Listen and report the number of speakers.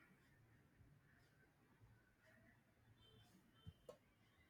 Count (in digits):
0